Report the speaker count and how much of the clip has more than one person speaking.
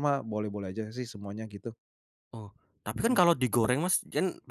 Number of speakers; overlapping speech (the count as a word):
two, about 5%